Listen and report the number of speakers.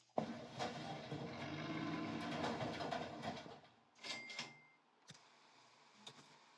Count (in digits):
0